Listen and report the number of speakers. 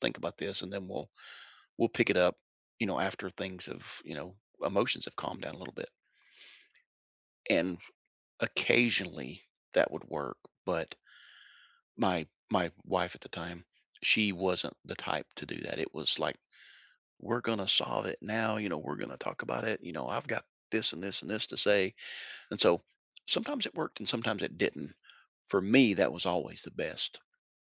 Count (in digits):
1